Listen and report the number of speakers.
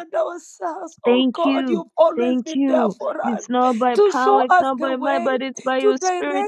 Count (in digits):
2